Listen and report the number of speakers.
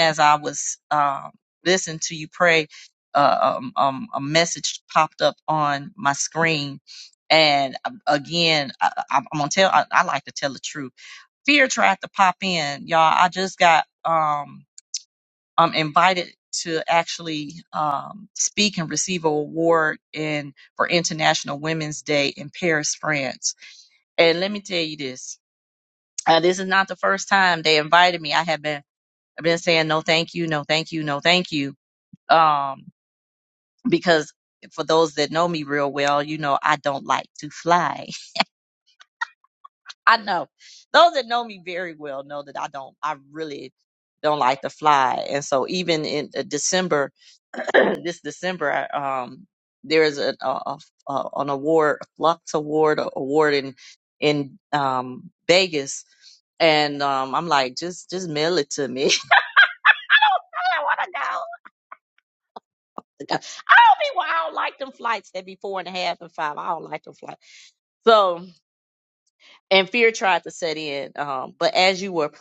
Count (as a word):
one